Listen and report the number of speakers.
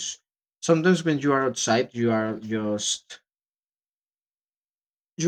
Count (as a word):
one